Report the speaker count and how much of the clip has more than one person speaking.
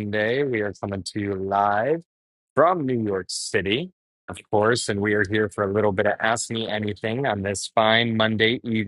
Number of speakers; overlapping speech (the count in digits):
1, no overlap